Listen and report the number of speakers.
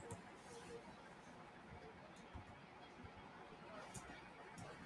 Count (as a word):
zero